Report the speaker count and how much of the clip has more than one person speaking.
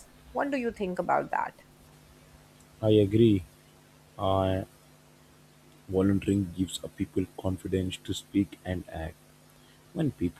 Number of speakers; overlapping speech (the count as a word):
two, no overlap